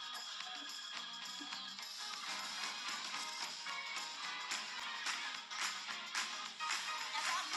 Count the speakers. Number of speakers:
0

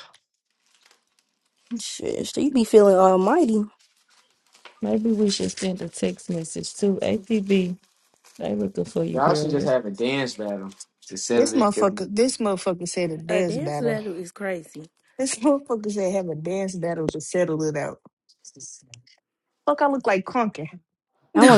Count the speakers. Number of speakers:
5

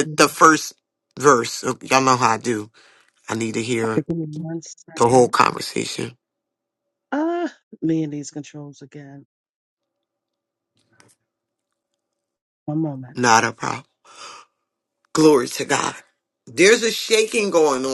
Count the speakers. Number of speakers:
2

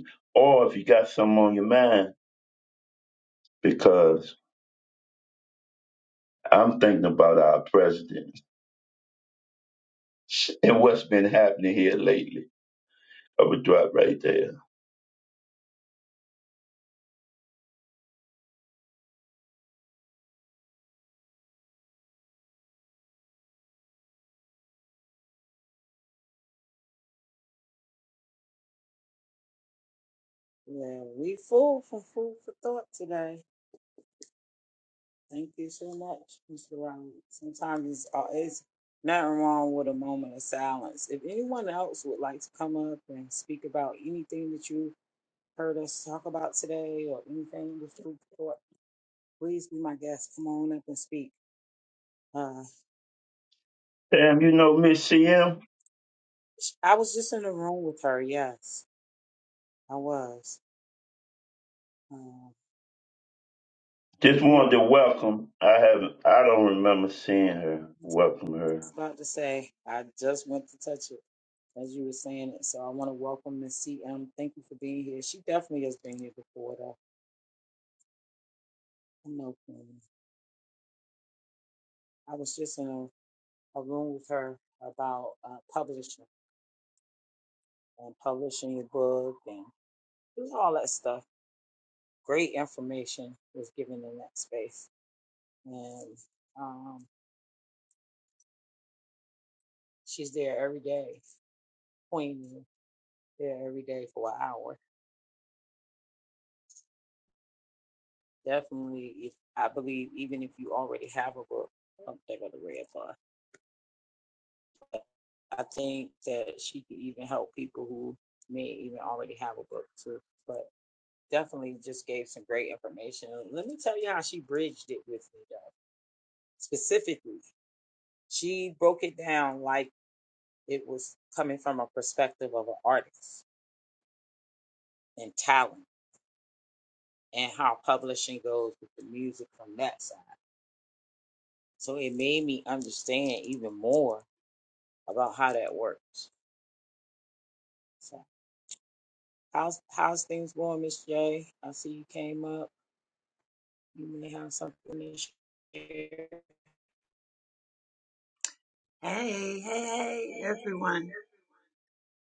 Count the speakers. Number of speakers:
3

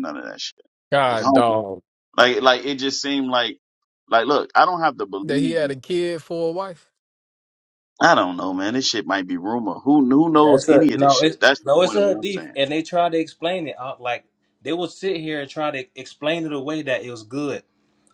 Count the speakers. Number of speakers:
3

